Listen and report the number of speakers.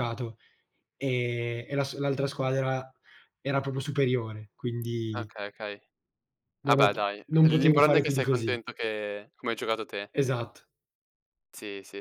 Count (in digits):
2